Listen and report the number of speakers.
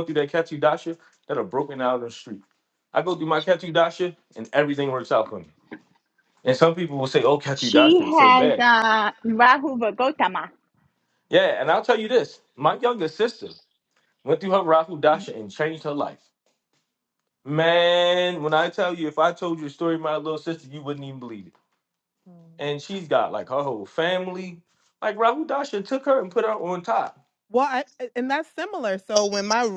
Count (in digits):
3